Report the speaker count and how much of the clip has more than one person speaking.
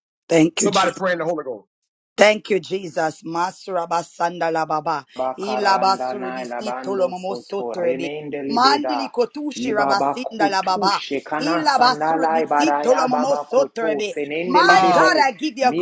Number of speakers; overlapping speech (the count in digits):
3, about 52%